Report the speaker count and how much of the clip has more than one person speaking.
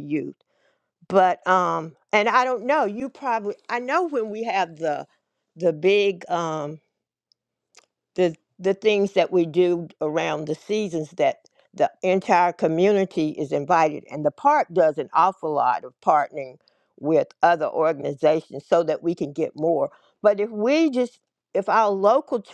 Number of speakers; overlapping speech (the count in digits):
1, no overlap